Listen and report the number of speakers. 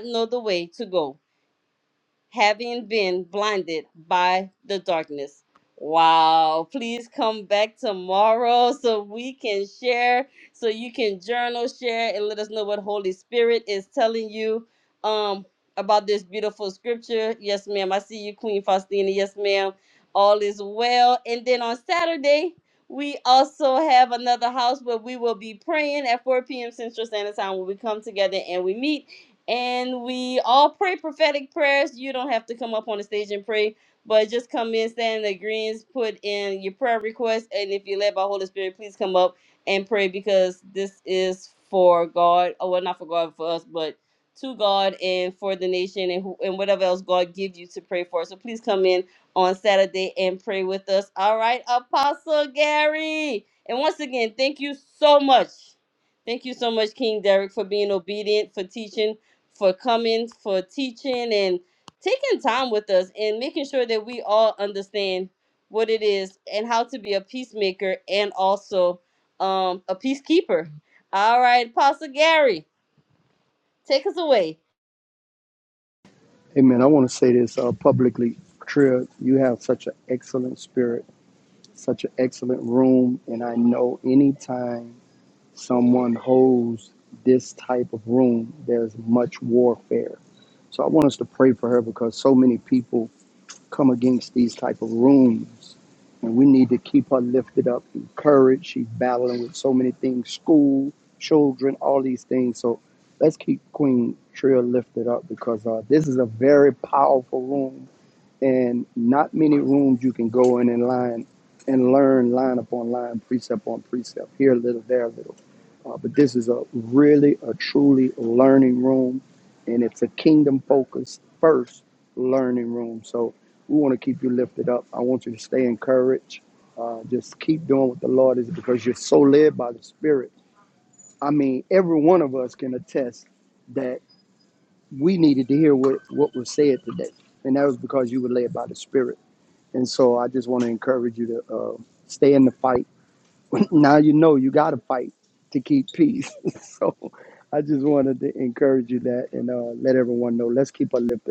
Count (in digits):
2